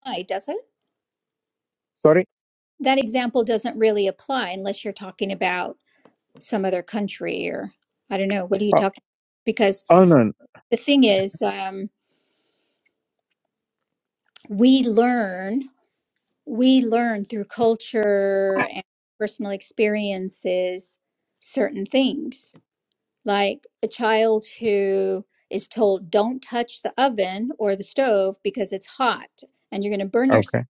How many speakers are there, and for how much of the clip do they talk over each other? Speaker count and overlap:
2, about 1%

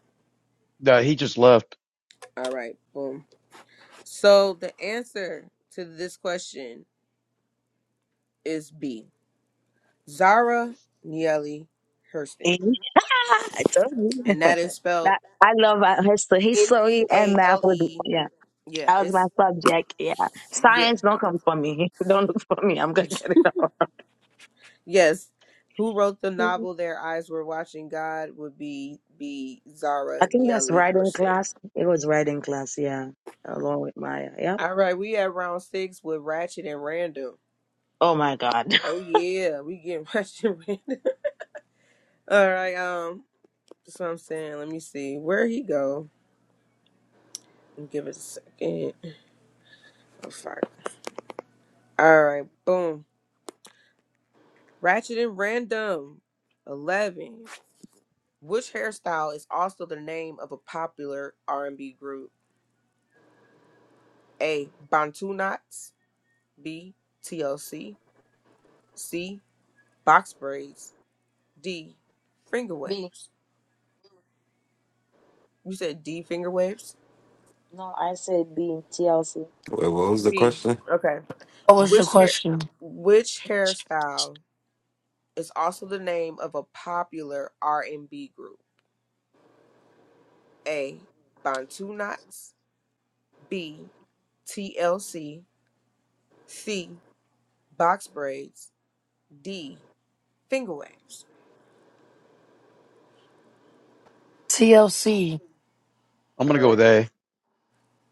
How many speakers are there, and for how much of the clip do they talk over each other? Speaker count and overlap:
5, about 5%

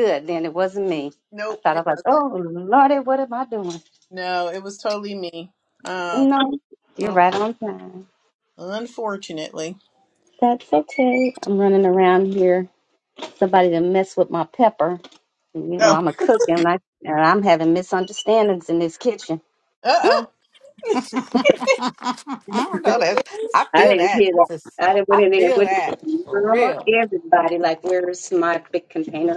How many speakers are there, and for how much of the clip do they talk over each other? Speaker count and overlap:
3, about 12%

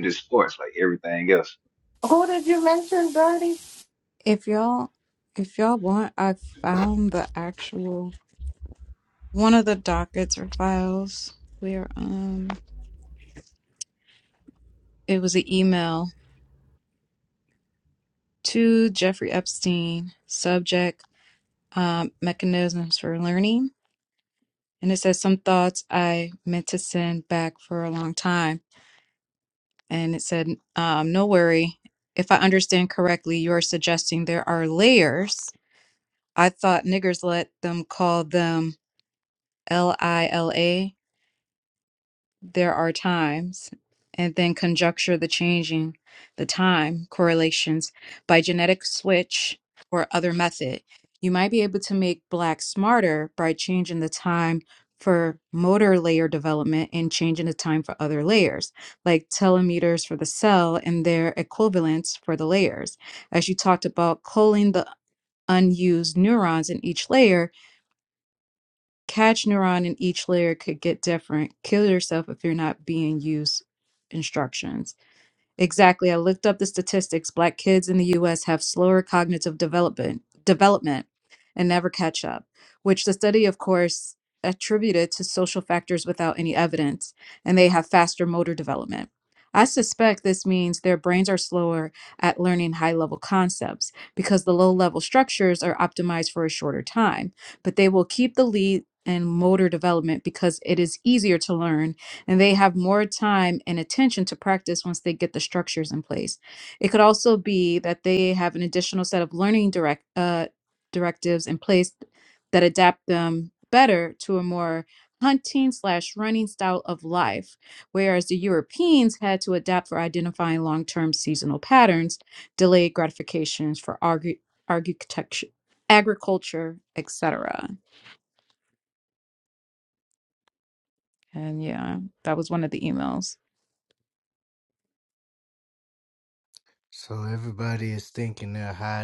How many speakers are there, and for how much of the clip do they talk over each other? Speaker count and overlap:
4, no overlap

